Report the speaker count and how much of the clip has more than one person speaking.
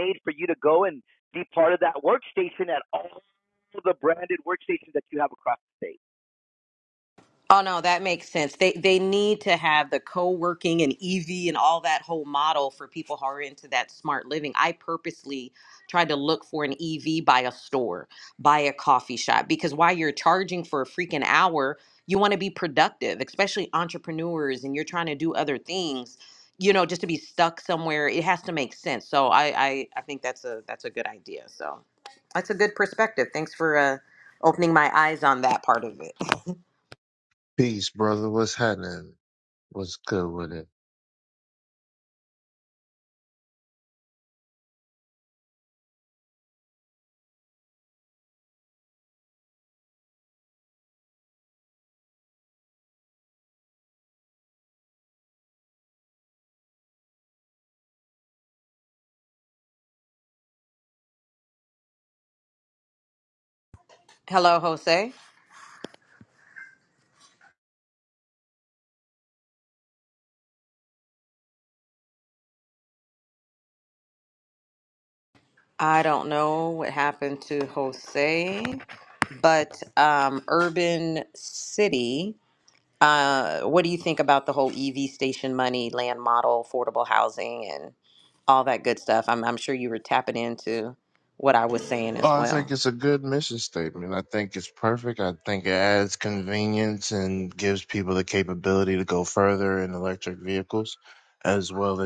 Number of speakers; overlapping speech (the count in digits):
3, about 1%